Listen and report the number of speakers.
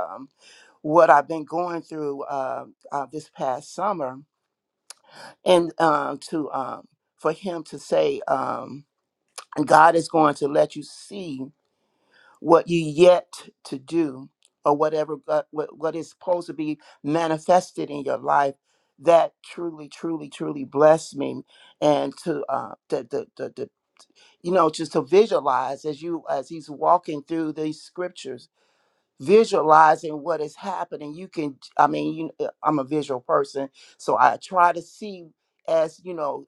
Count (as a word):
one